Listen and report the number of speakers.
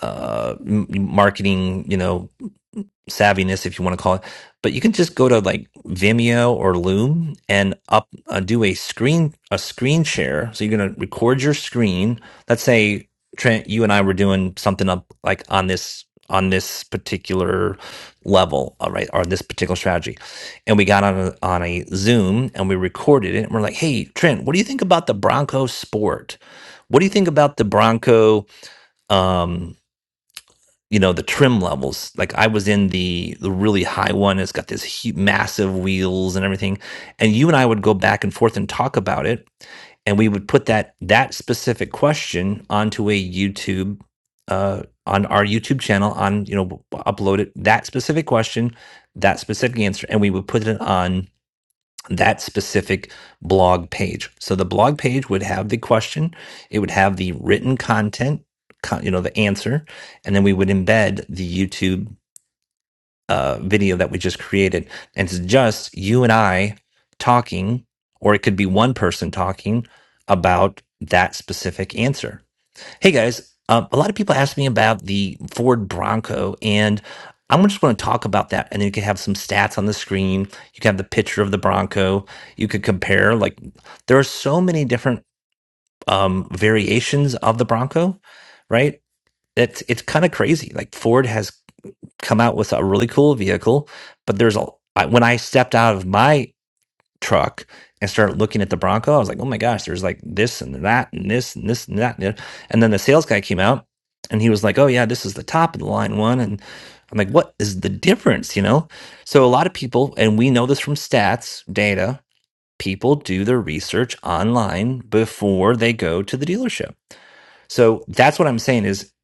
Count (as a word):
one